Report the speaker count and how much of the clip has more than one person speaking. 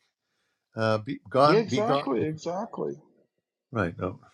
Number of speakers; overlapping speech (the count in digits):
2, about 18%